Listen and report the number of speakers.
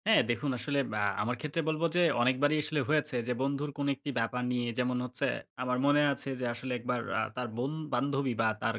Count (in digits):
1